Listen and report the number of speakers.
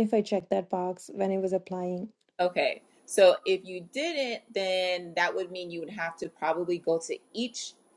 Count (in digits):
2